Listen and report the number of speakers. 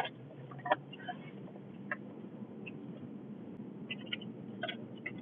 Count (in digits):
0